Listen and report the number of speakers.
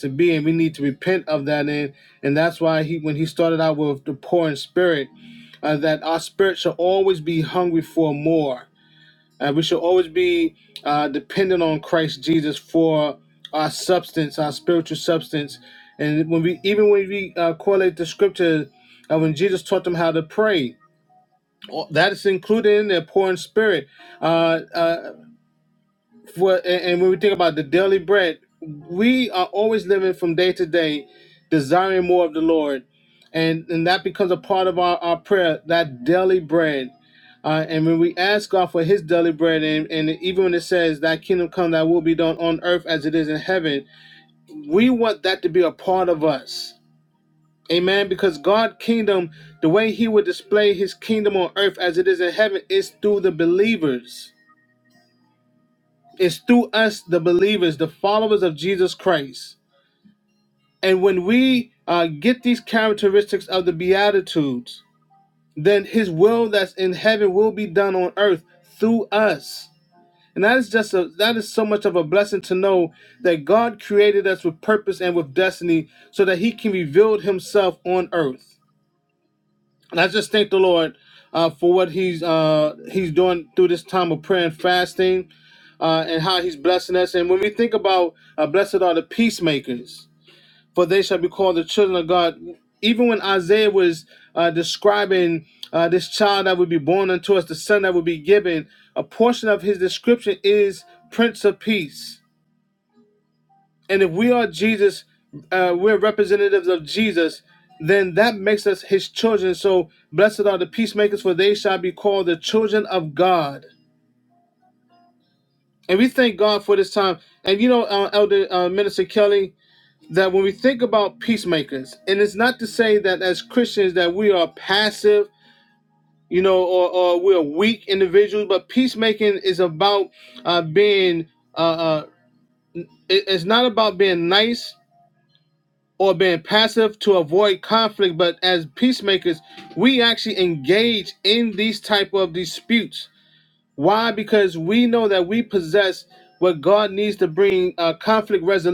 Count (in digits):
1